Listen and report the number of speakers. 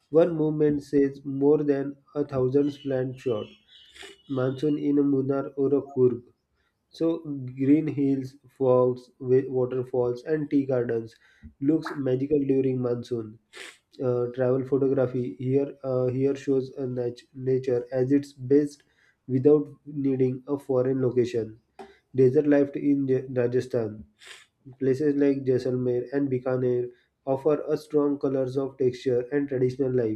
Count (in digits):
1